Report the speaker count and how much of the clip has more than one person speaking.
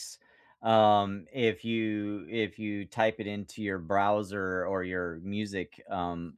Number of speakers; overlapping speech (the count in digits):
1, no overlap